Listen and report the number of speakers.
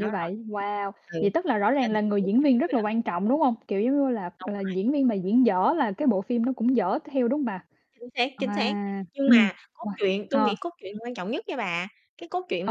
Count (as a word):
two